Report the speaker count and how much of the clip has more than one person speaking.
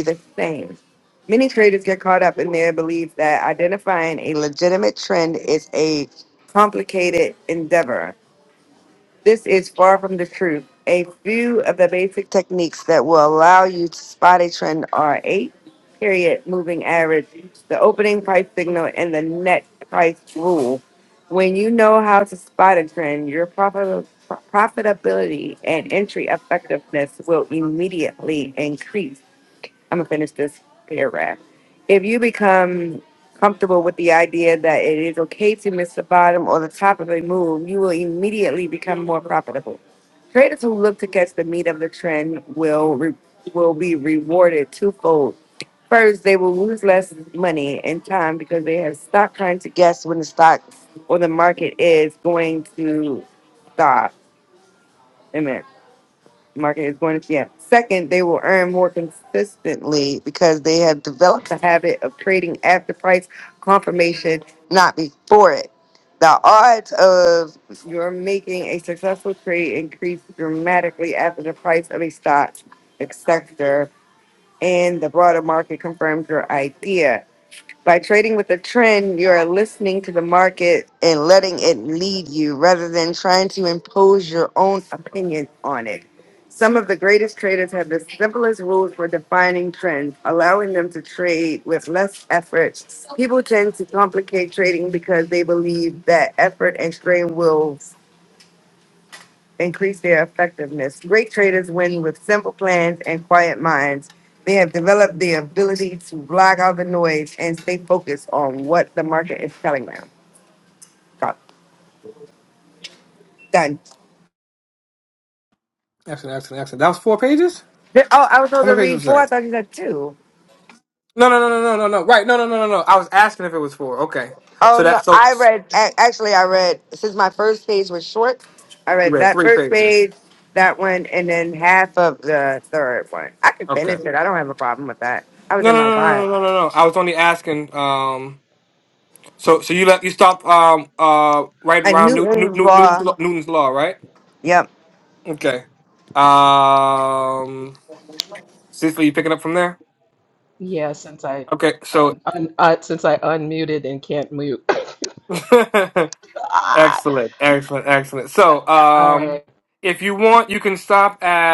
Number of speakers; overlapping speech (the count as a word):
three, about 3%